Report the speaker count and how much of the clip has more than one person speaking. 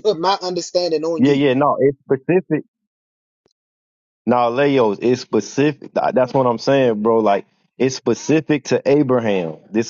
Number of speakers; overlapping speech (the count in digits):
2, about 3%